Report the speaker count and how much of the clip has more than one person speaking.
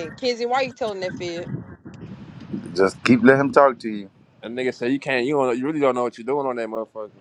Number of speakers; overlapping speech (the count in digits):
3, no overlap